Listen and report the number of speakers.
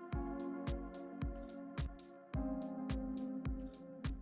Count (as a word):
zero